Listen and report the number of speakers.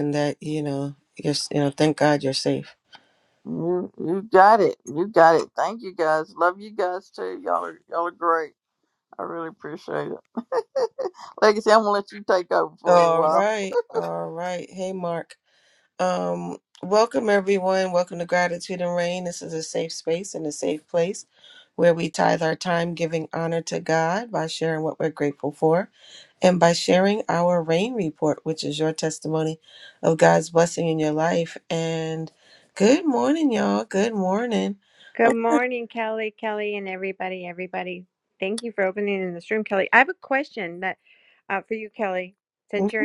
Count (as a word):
three